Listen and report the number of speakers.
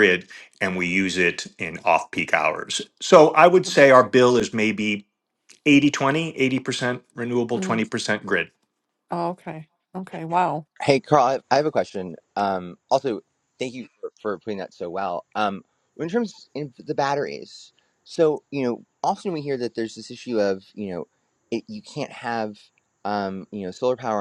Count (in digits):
3